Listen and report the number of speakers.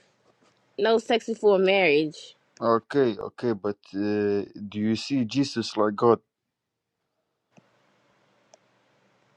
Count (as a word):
two